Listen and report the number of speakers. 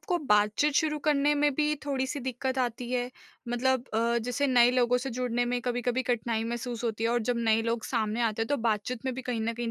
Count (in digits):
1